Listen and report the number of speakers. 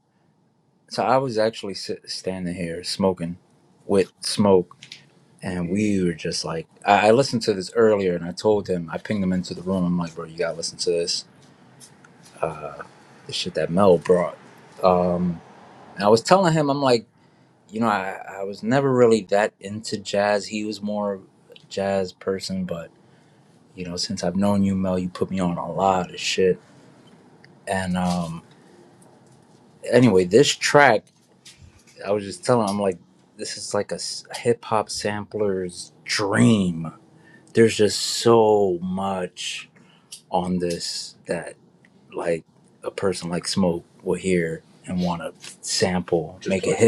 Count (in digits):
1